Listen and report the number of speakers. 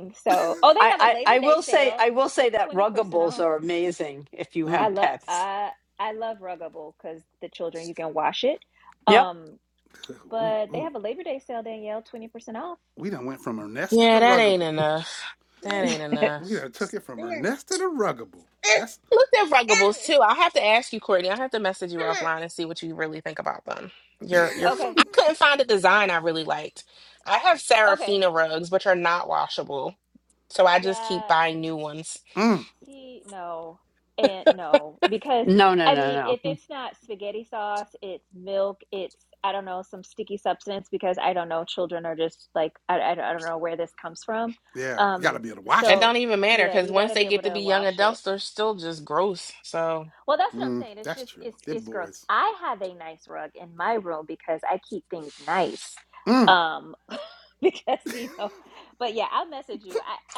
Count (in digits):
4